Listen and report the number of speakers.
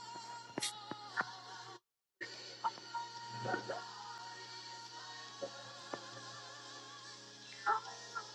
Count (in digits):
0